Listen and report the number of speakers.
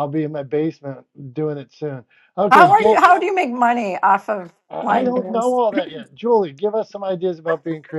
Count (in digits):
2